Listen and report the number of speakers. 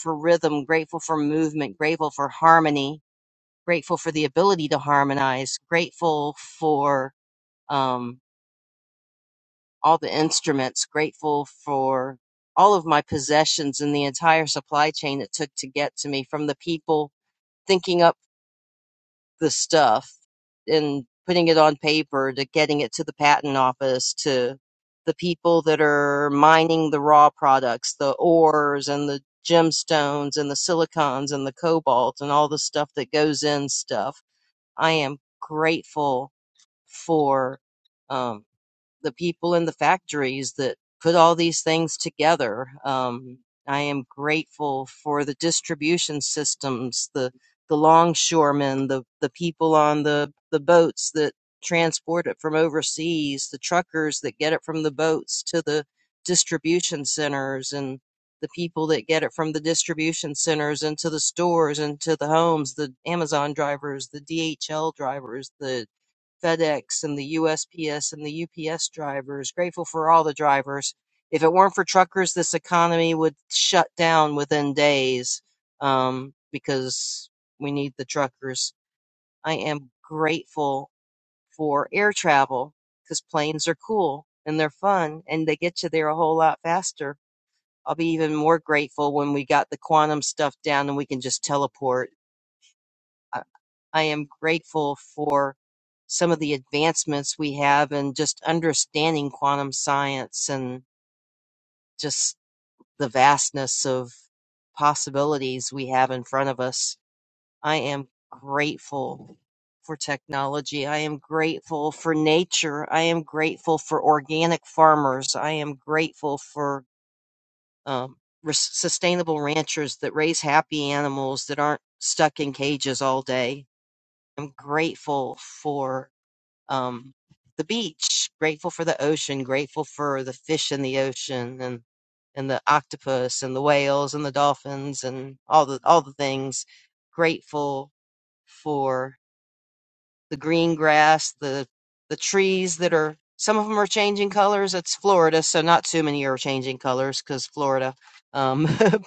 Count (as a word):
one